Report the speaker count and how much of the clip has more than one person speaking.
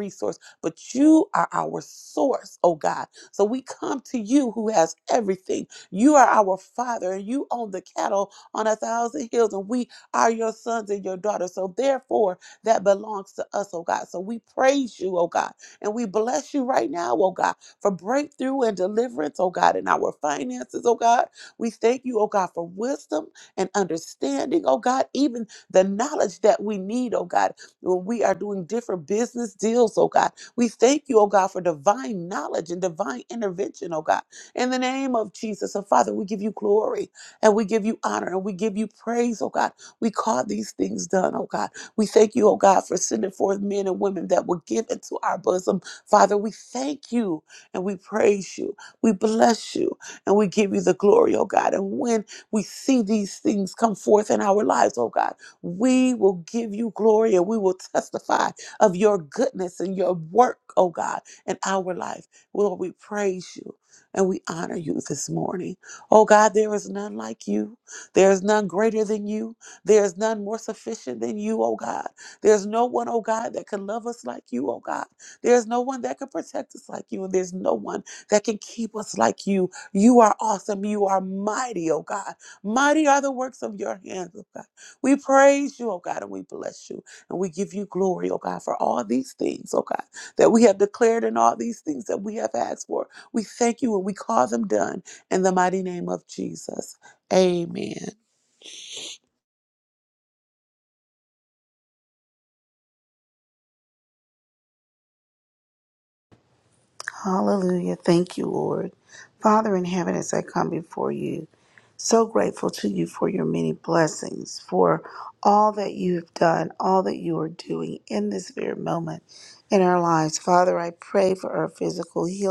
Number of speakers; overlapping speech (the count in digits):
2, no overlap